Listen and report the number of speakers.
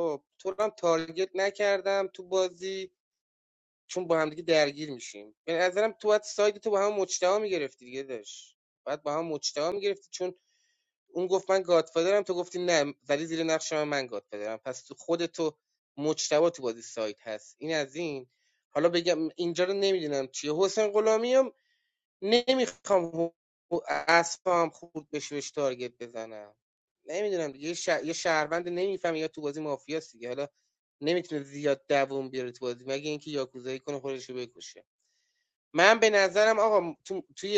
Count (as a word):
one